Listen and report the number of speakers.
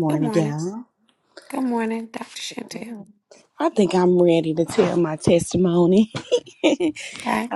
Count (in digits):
2